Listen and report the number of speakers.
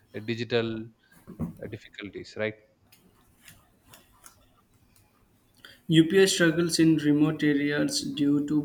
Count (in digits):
2